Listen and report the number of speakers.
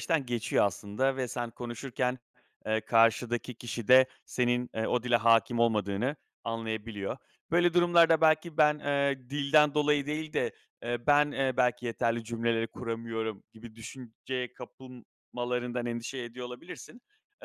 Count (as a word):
one